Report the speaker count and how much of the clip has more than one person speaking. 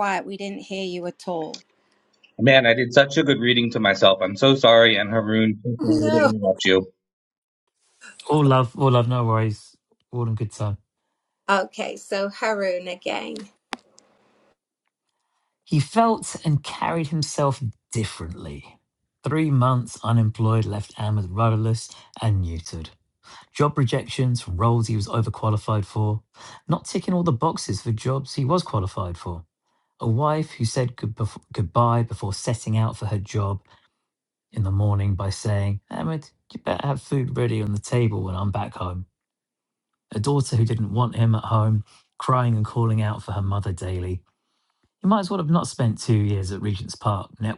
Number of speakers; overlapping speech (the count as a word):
three, about 1%